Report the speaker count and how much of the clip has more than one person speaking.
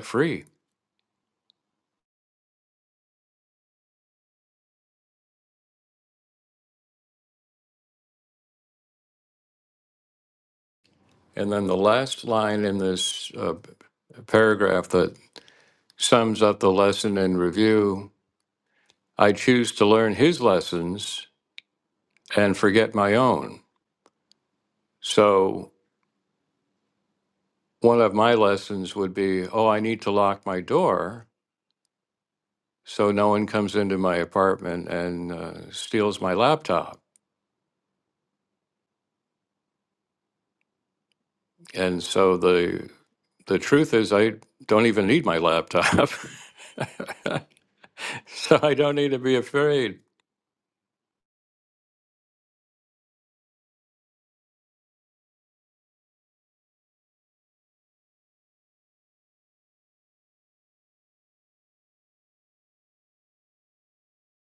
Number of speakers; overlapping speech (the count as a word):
one, no overlap